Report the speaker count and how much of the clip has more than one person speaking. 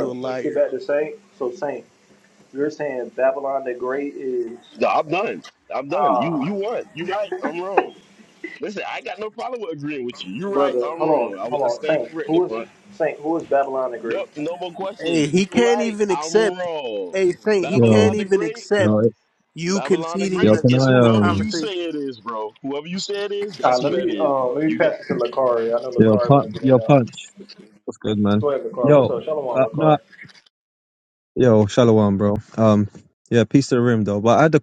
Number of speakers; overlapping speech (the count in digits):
4, about 33%